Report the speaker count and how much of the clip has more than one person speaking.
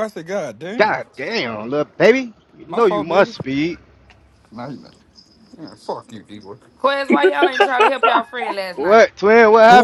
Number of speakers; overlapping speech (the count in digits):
3, about 12%